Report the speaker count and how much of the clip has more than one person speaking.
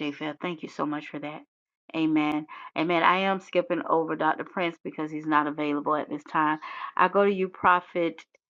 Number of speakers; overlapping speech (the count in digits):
1, no overlap